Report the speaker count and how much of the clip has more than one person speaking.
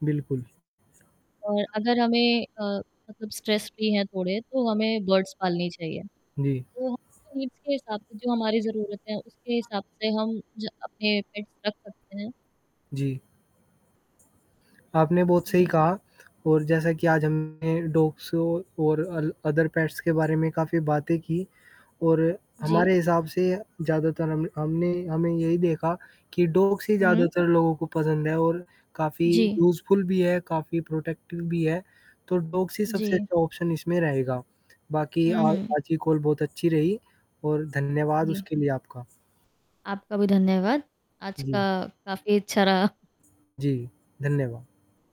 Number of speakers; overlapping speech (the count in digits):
2, about 5%